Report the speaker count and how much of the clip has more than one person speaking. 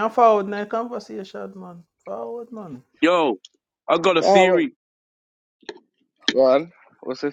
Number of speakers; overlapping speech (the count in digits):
3, about 6%